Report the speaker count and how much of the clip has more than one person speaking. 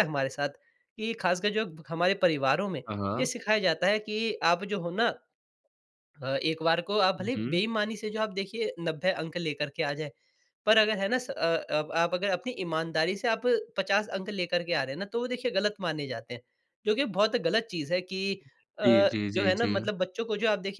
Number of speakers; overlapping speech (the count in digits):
2, about 5%